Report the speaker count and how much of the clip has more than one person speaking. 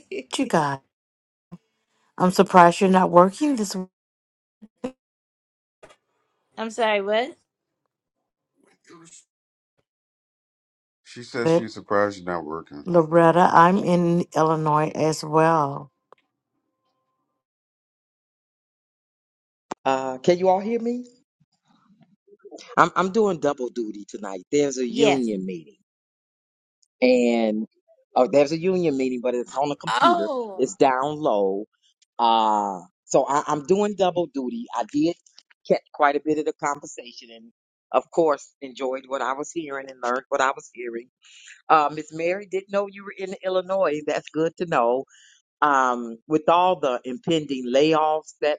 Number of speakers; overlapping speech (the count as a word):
four, about 3%